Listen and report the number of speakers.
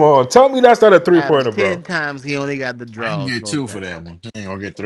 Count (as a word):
three